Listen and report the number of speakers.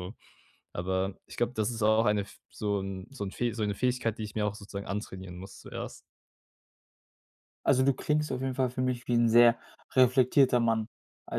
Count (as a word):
two